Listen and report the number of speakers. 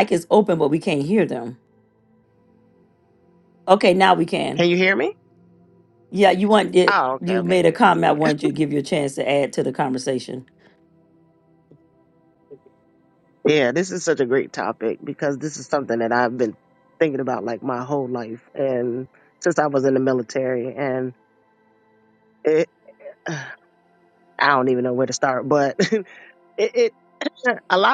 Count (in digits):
2